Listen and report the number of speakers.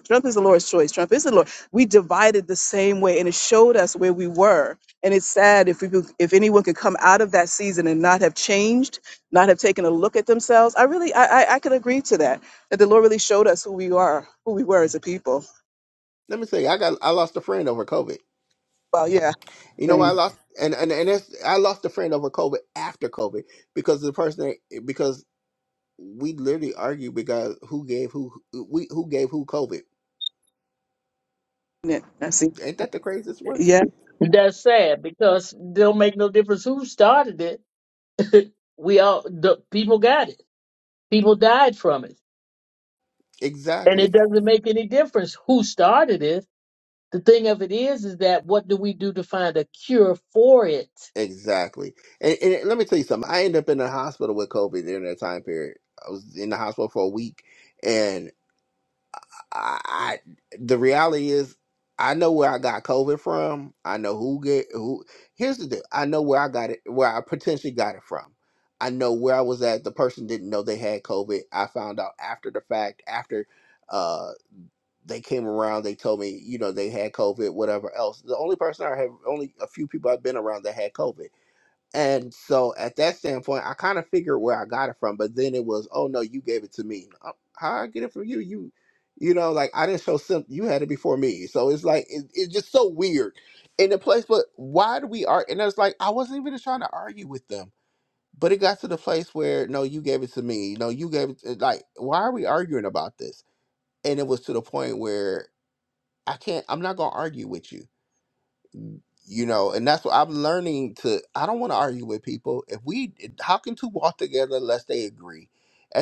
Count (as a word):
three